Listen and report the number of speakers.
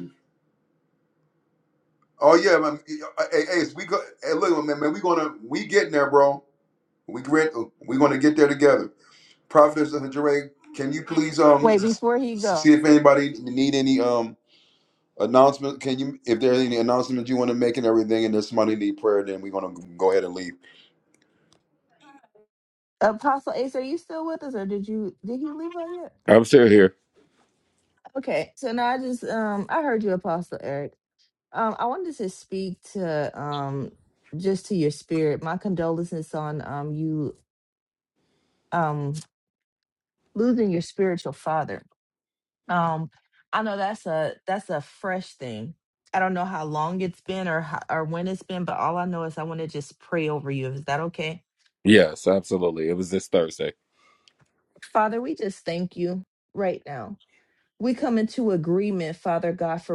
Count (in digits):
3